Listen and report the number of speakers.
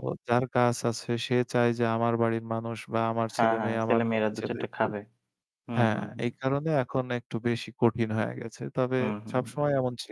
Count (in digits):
2